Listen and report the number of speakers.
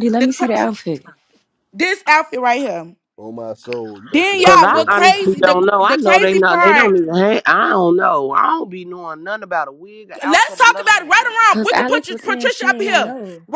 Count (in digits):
4